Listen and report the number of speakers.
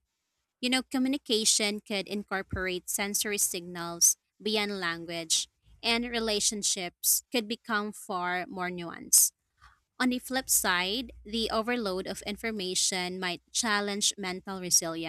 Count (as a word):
one